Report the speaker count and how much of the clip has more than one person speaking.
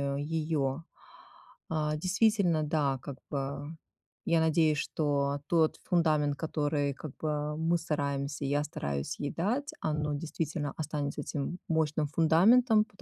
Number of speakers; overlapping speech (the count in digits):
1, no overlap